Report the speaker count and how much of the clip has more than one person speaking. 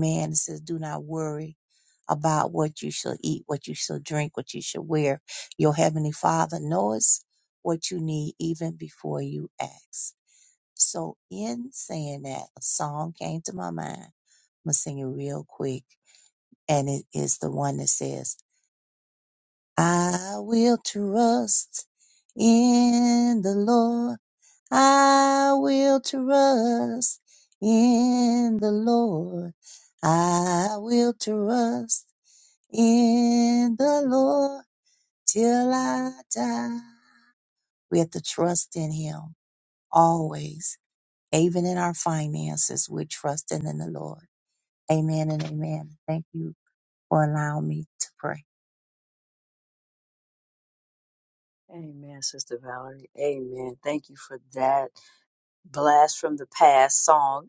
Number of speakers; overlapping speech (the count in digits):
2, no overlap